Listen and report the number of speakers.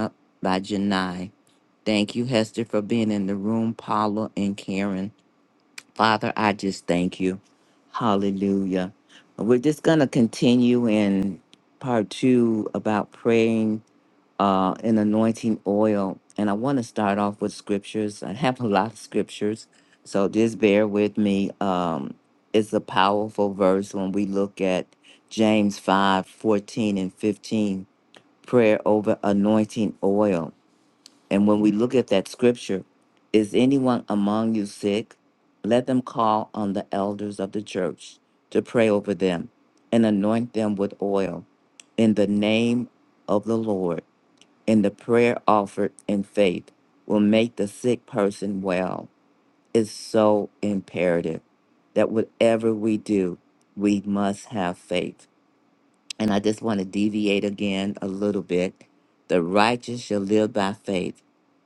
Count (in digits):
1